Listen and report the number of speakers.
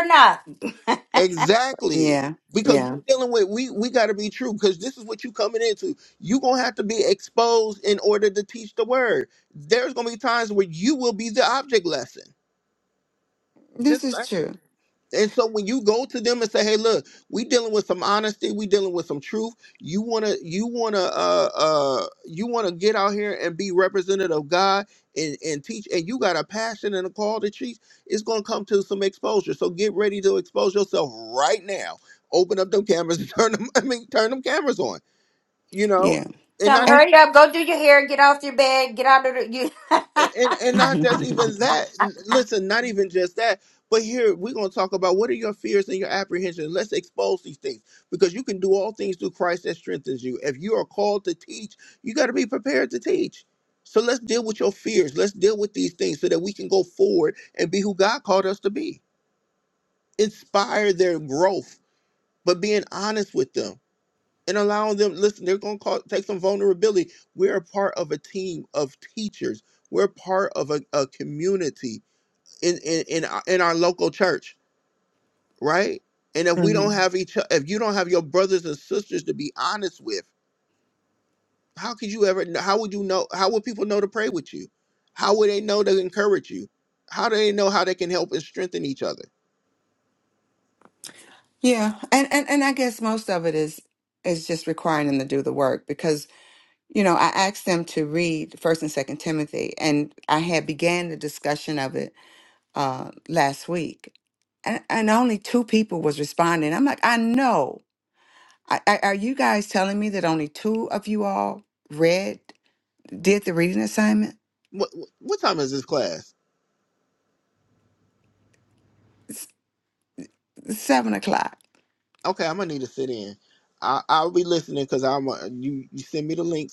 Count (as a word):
three